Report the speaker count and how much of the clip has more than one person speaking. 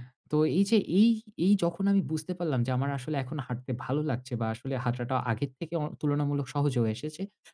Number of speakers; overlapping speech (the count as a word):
one, no overlap